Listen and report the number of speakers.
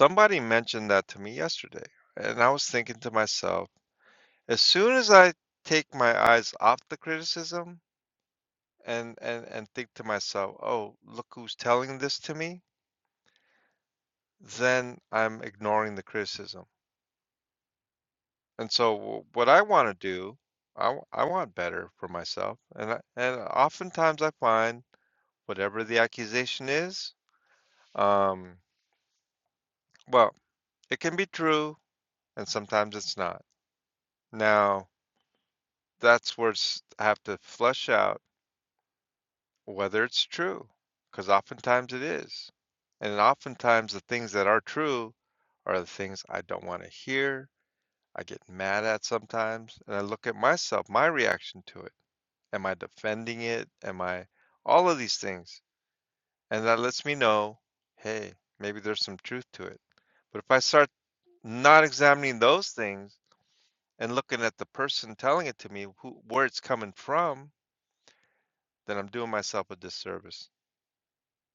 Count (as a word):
one